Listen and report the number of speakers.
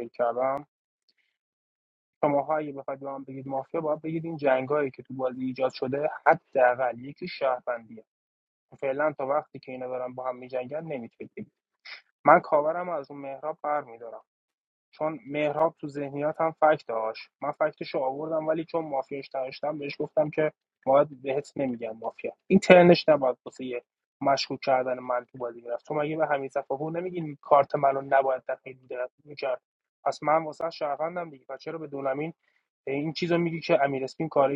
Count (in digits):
1